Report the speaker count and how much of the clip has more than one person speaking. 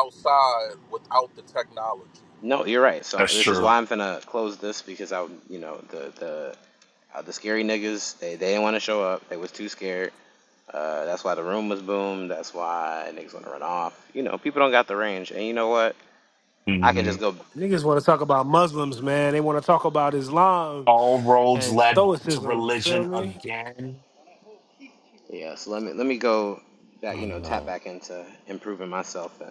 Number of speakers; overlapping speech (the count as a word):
four, about 11%